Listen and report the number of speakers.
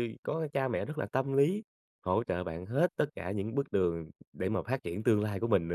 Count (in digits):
1